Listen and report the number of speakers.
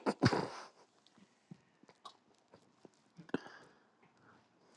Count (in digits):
0